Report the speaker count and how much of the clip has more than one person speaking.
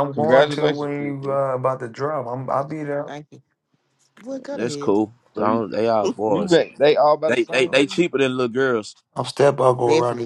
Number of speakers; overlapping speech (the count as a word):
four, about 33%